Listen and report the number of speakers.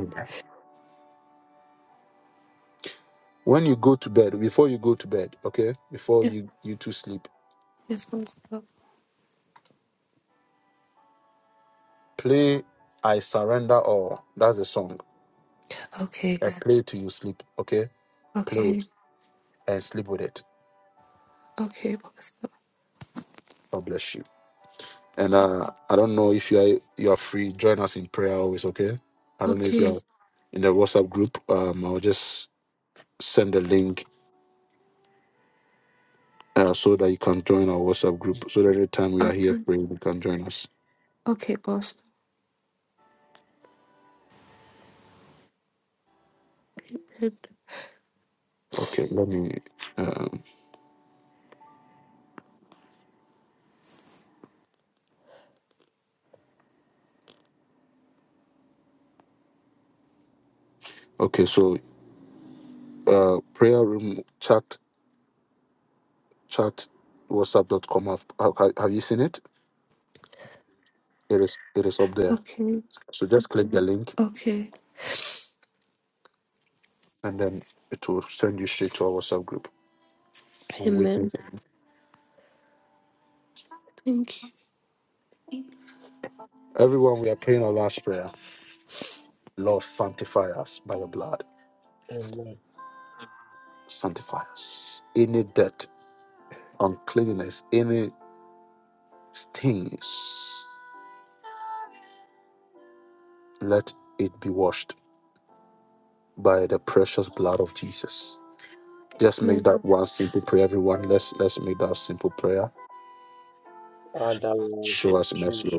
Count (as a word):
three